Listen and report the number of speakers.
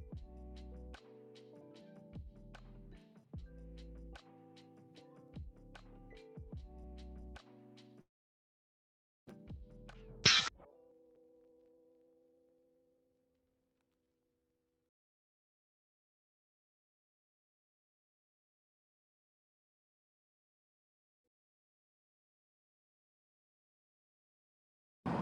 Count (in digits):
0